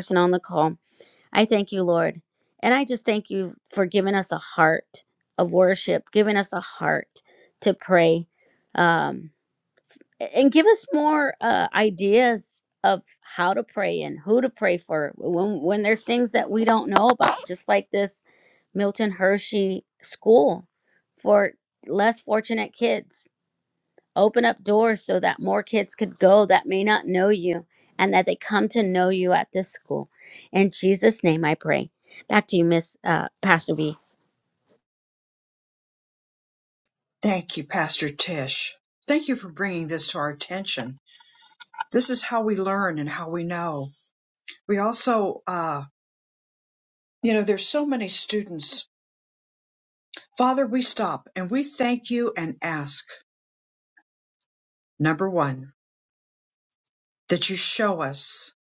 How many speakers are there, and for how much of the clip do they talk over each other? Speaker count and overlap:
two, no overlap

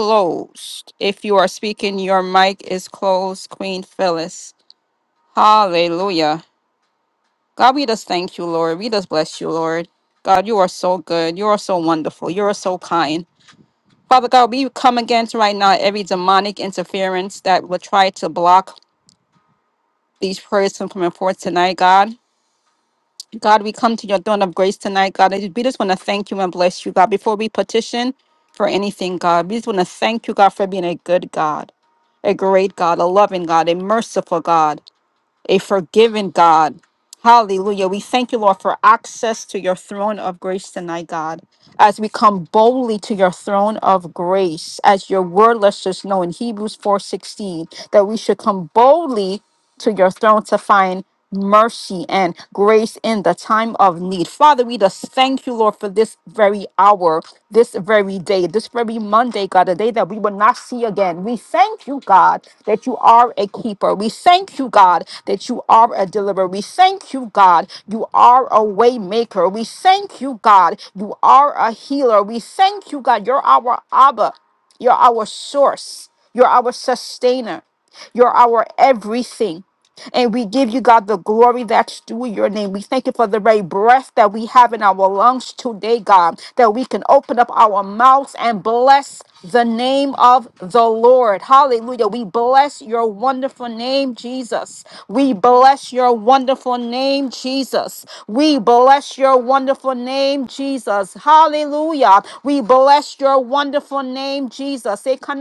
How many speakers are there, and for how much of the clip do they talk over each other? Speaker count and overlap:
one, no overlap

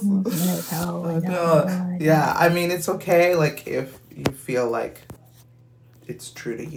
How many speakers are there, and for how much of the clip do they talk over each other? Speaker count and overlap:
two, about 19%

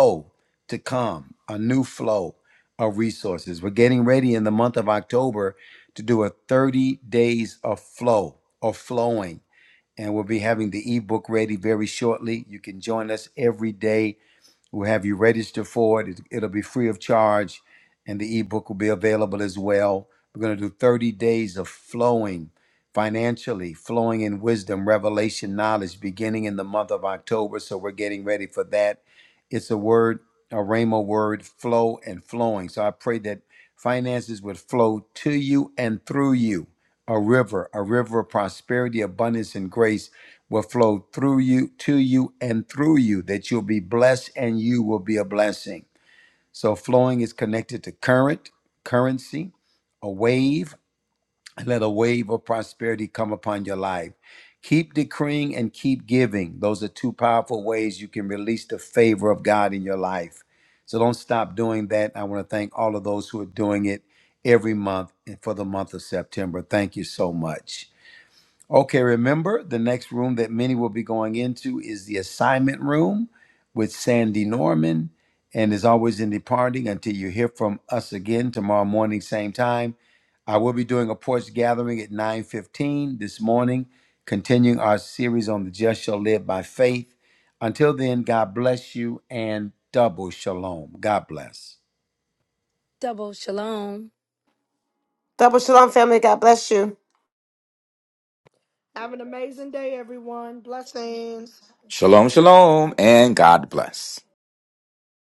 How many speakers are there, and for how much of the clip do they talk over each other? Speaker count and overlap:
five, no overlap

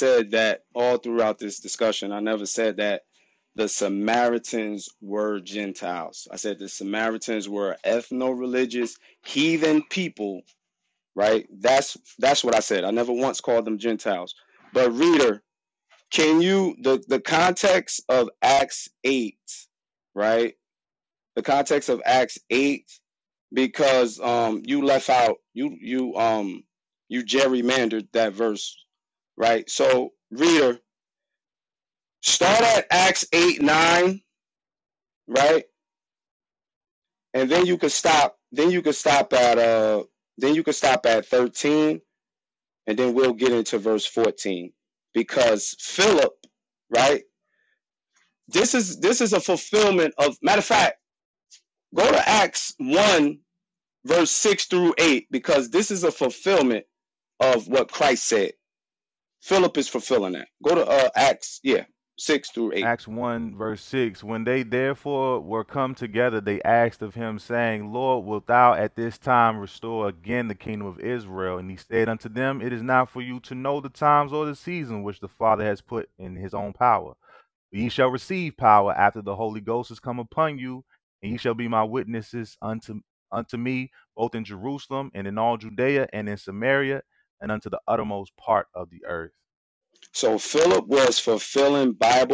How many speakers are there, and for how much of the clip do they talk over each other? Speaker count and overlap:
two, under 1%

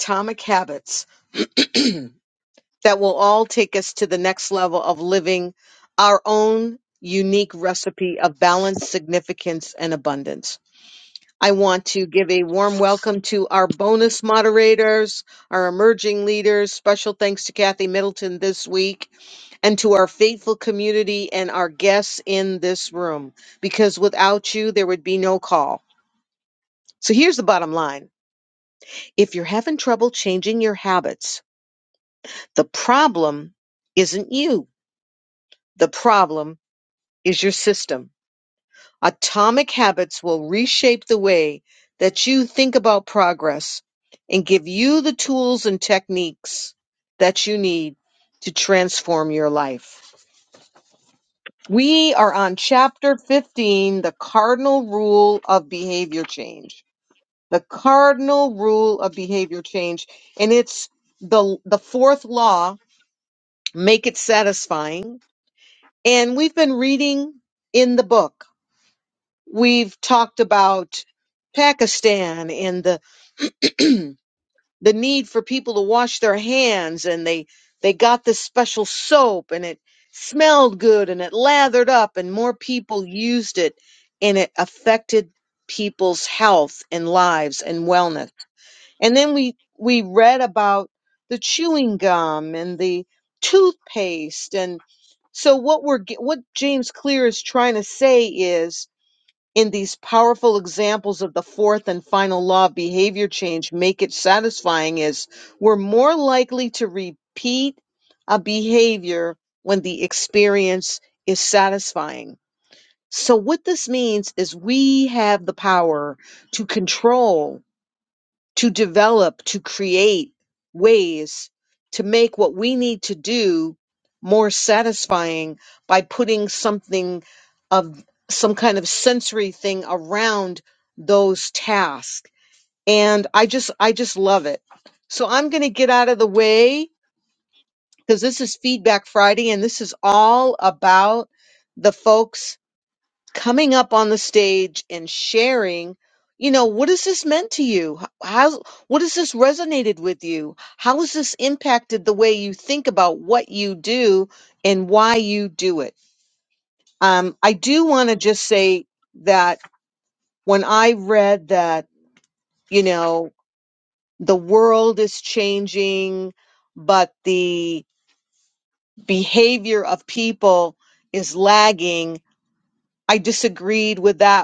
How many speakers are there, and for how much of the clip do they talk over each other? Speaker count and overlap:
one, no overlap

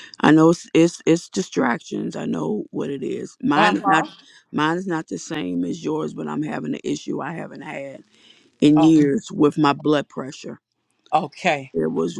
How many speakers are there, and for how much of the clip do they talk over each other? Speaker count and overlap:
two, about 5%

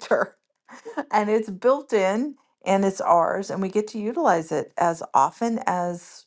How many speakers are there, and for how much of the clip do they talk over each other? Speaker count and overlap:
one, no overlap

